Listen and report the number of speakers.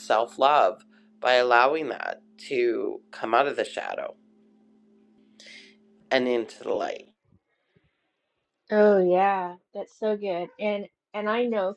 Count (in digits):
2